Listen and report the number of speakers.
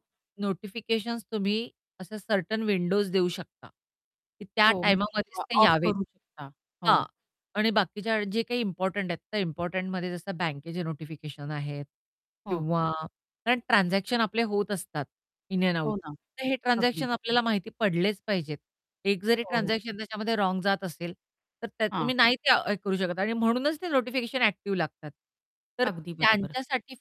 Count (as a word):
two